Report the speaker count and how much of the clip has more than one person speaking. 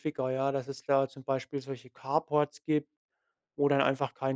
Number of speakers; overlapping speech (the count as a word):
one, no overlap